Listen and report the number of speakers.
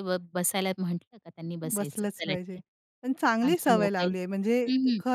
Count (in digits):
2